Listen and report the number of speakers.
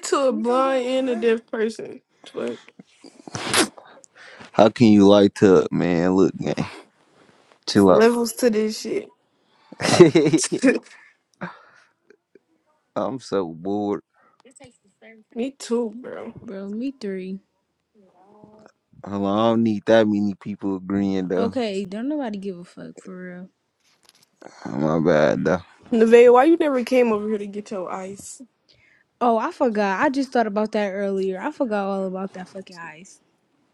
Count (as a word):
three